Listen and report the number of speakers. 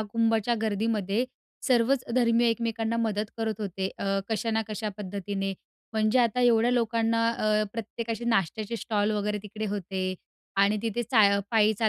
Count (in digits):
1